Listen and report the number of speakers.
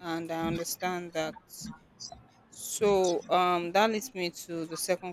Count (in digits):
1